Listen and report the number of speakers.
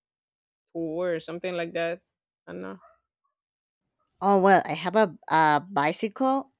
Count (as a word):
two